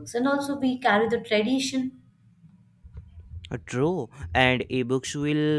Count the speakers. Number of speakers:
two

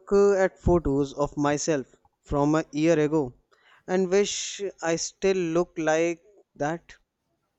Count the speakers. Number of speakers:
one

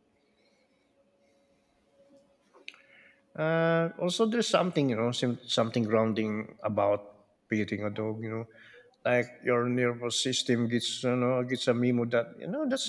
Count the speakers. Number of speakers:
one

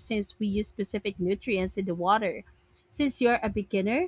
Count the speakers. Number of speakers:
one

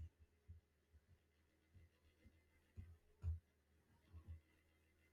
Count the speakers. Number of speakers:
zero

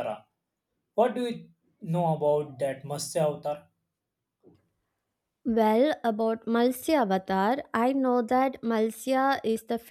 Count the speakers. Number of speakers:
two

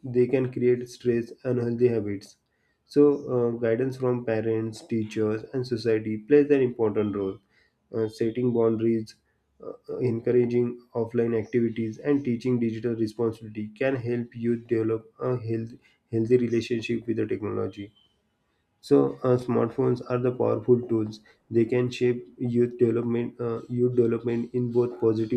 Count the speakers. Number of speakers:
one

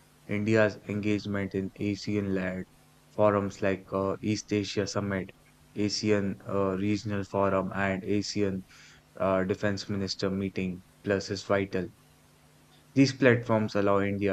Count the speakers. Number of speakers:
one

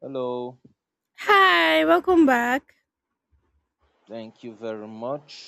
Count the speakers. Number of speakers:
two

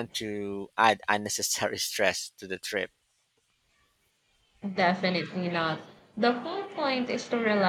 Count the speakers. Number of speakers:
two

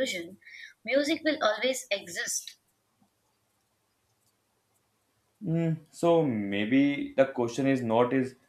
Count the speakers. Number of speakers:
two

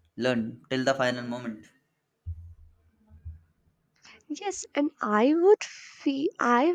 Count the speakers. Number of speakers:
two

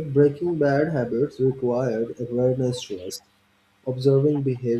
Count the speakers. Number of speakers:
one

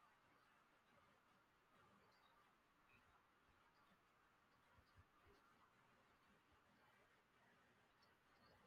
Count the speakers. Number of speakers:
zero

